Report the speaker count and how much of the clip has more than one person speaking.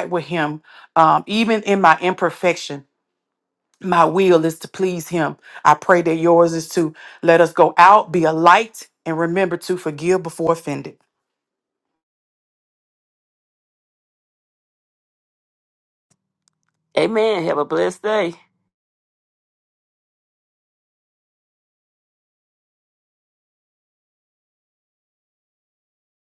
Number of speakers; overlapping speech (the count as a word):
two, no overlap